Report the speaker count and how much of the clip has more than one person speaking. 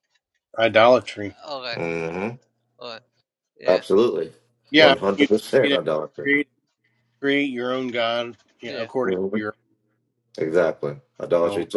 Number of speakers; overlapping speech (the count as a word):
three, about 15%